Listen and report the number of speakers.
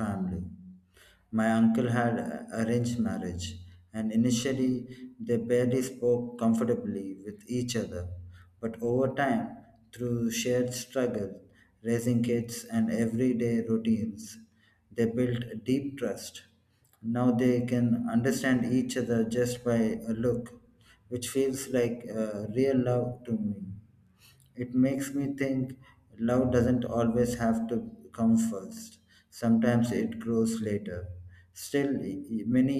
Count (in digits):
1